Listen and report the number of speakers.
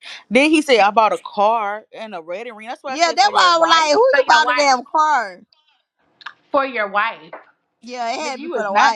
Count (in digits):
3